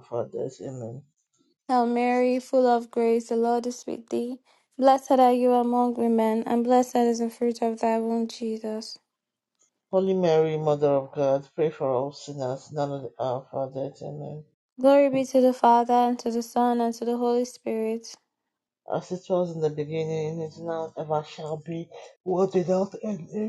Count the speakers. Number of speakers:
2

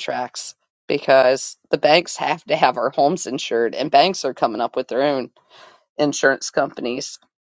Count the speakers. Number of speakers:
1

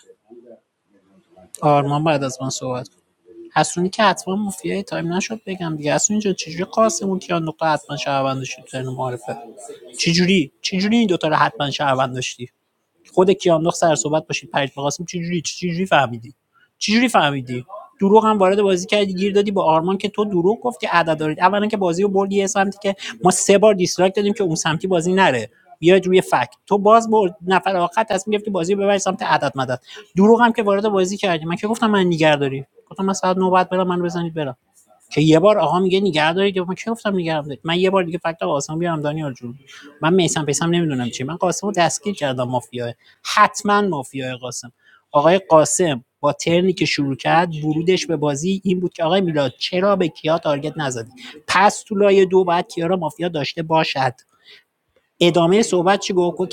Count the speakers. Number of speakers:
1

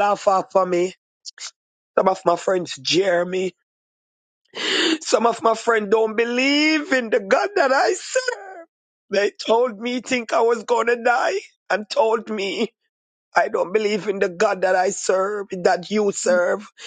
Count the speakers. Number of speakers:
1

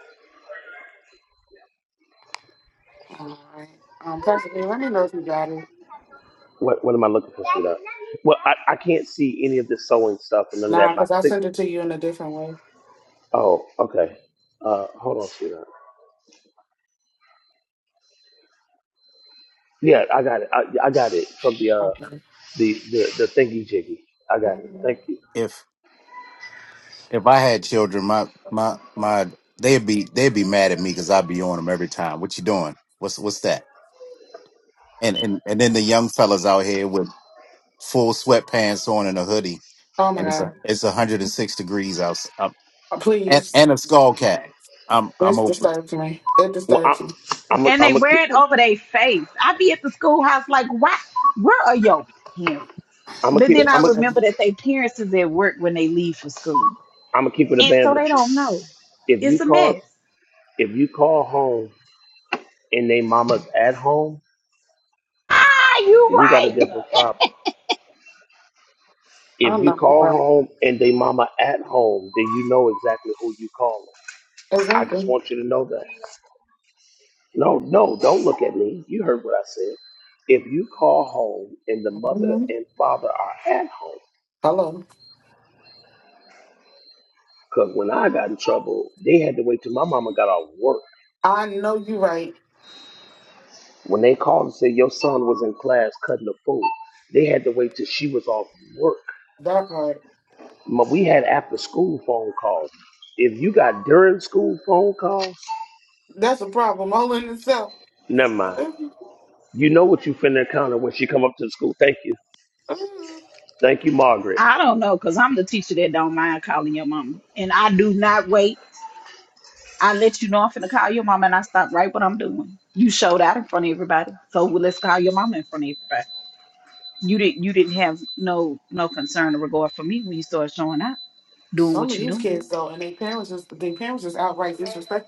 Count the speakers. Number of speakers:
4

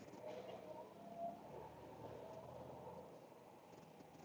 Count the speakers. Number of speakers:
0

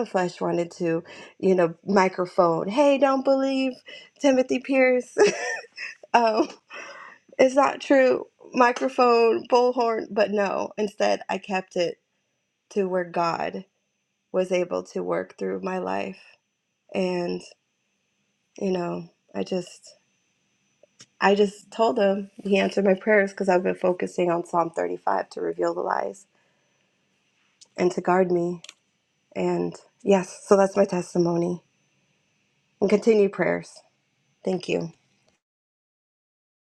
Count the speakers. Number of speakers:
1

